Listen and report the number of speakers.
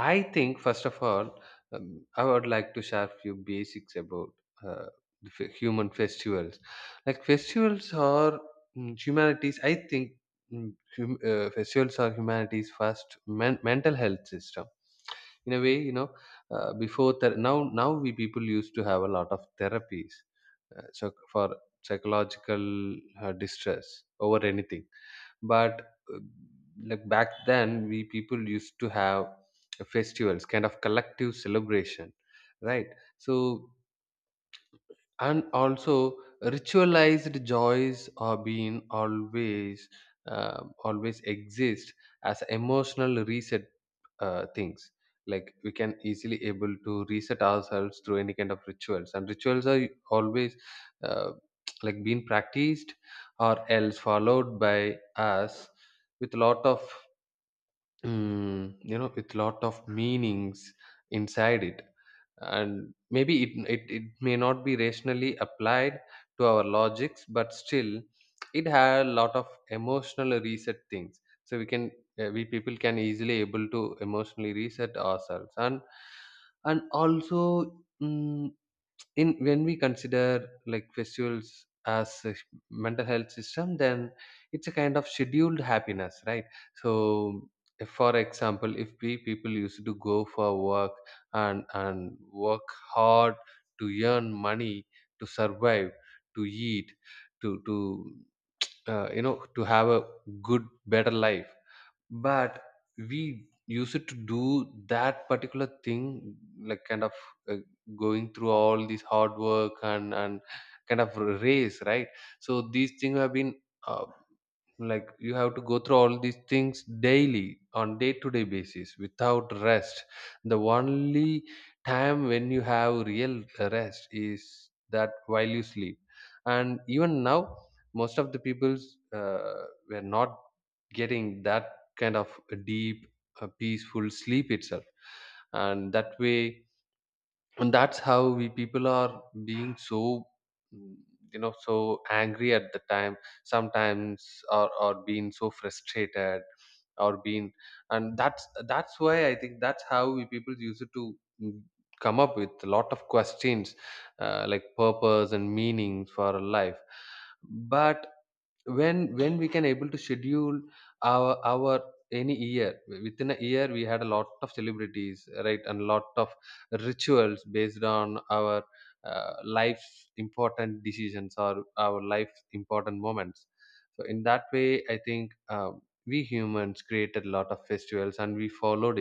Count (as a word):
one